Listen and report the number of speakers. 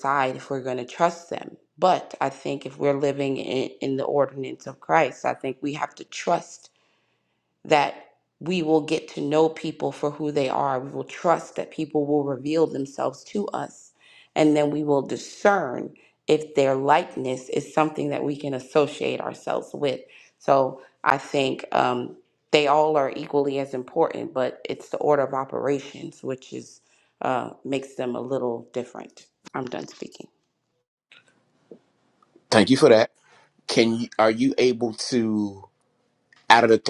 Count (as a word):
two